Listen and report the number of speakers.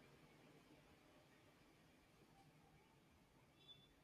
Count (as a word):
zero